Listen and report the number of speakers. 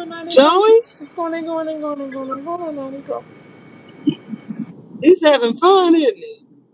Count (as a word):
two